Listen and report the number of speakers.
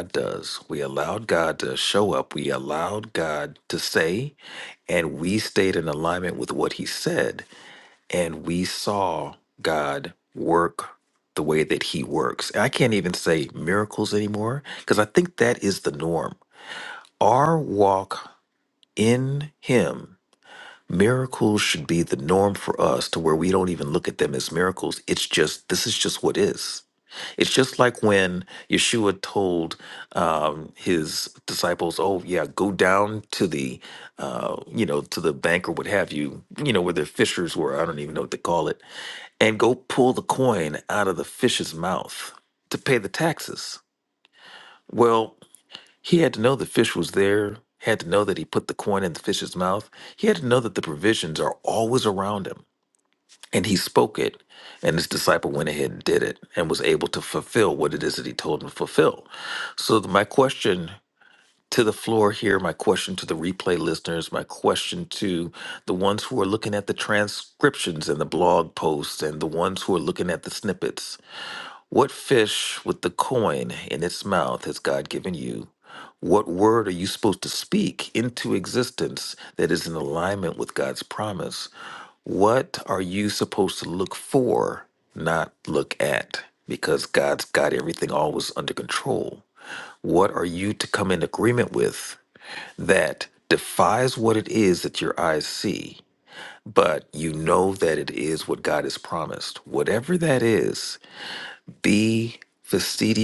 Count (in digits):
1